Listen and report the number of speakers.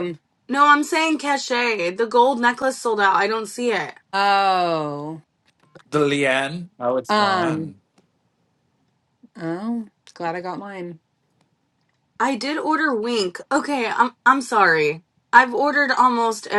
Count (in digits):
3